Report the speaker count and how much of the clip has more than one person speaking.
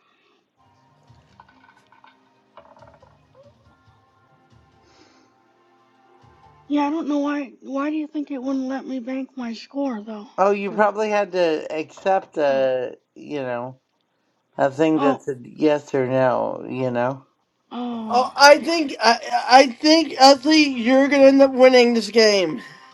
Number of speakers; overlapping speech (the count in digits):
3, about 7%